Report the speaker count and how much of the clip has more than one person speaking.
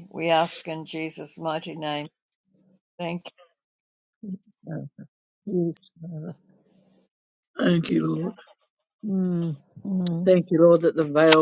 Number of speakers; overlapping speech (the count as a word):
three, under 1%